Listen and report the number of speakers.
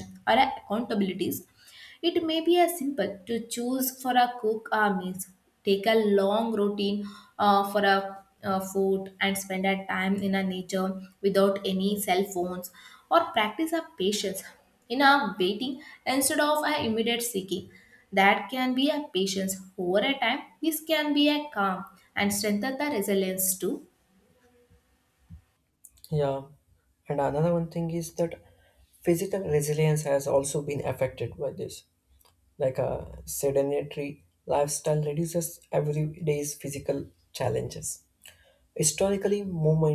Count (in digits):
2